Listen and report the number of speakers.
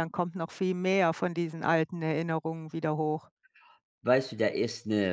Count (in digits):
2